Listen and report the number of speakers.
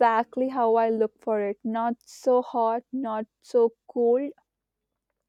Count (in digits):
1